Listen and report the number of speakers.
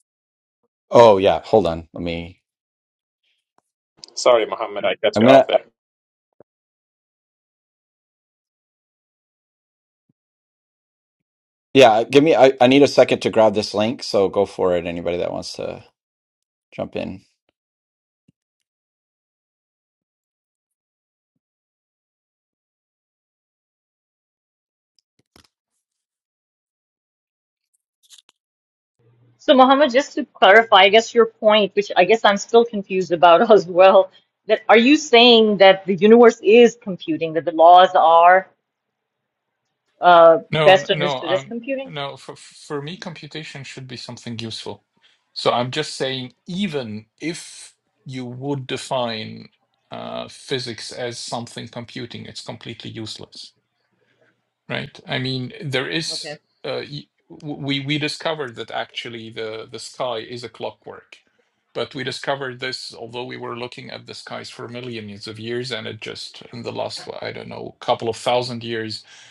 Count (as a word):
four